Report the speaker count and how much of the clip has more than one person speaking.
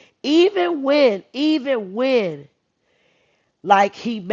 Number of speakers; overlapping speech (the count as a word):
one, no overlap